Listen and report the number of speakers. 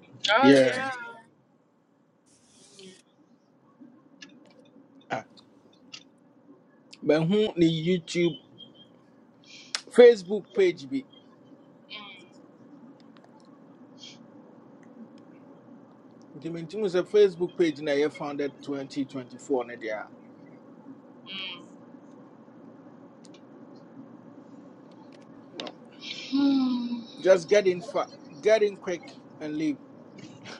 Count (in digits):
2